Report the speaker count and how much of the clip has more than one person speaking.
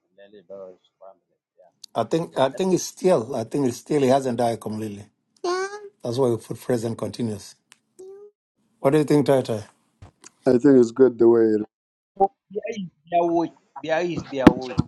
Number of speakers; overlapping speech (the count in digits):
3, under 1%